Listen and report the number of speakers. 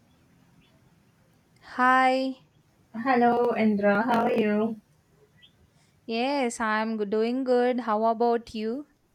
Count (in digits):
2